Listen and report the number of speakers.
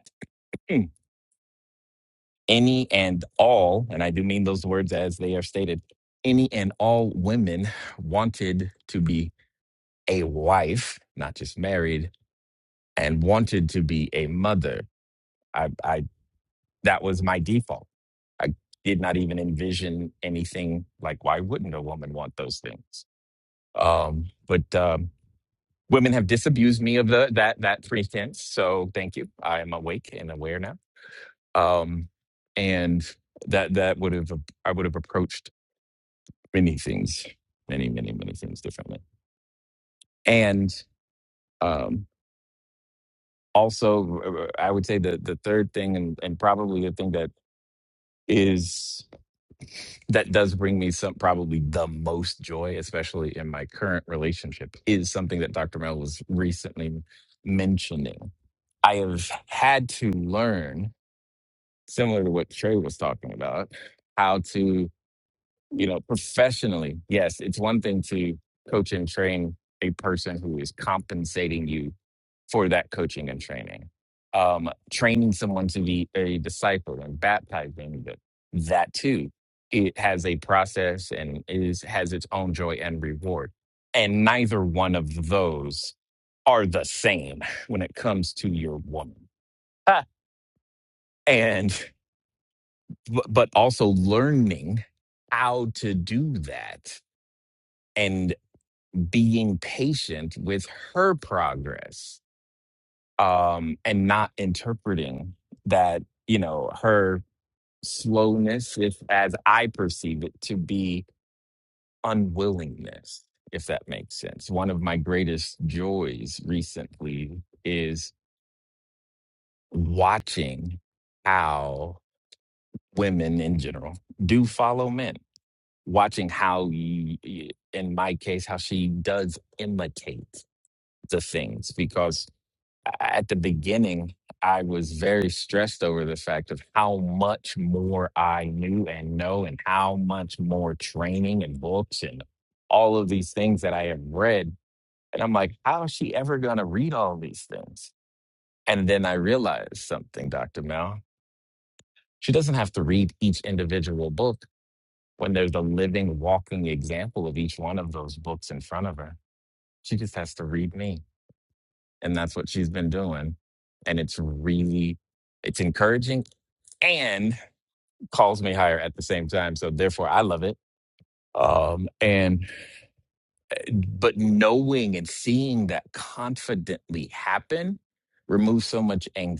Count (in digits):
1